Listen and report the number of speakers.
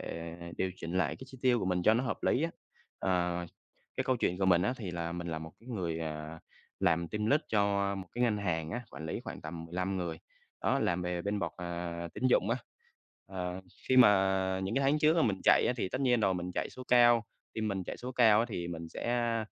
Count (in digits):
1